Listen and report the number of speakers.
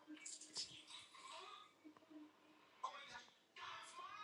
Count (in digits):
0